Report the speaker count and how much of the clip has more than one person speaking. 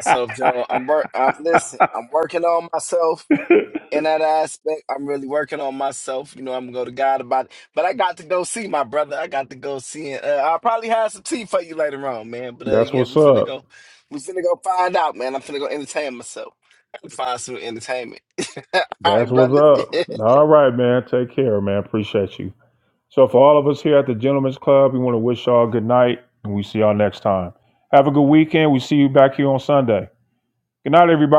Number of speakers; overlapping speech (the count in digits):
2, about 5%